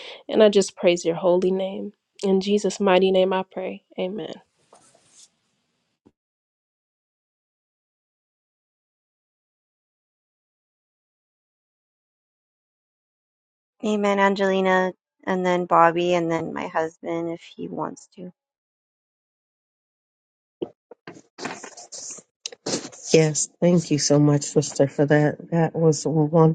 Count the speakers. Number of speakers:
three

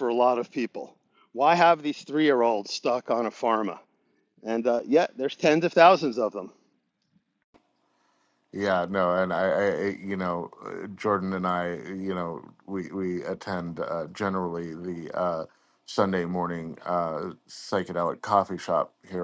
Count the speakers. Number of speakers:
two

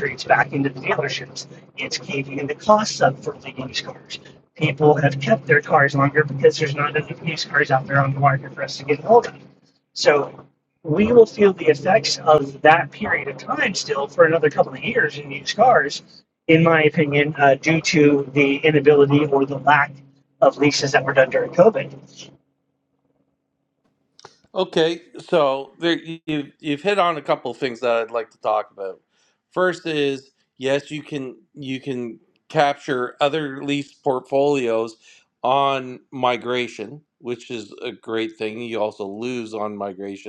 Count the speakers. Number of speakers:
two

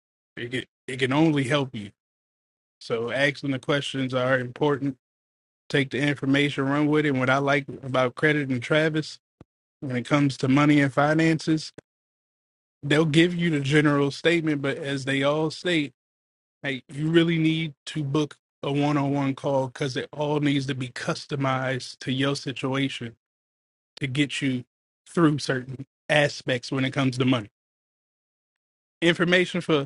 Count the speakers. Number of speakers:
one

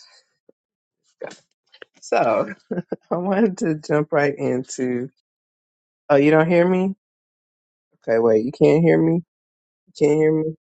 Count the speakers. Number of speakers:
one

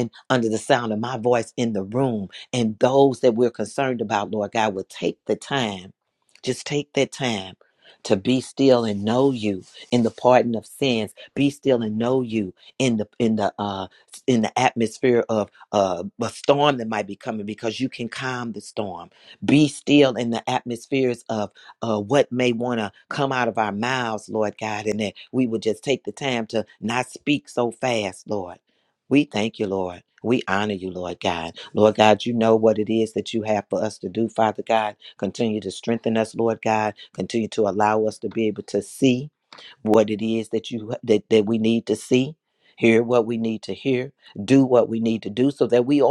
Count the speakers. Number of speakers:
one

